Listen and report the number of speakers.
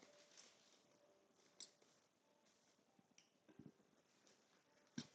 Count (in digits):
0